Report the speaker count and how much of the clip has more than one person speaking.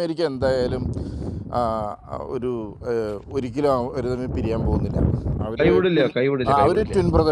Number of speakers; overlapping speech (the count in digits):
2, about 7%